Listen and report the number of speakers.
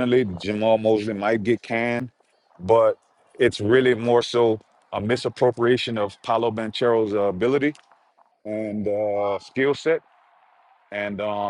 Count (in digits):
1